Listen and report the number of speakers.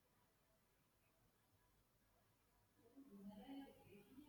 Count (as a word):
zero